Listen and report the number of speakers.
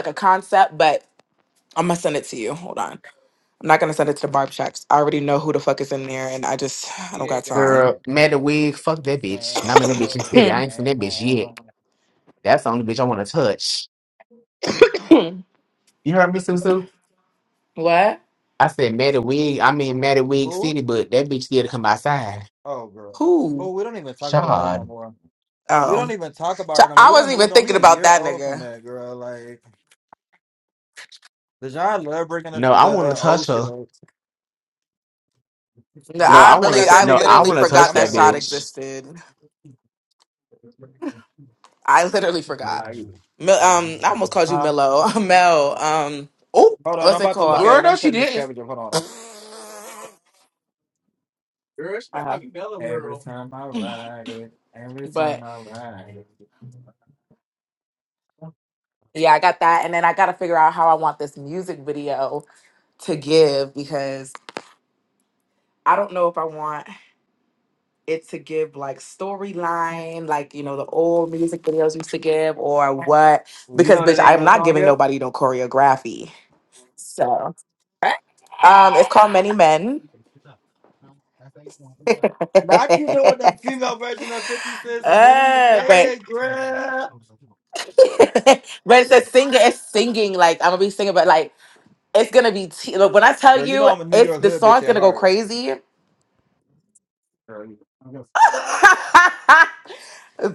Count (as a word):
three